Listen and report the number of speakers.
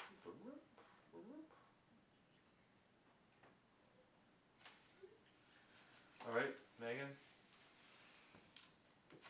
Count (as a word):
one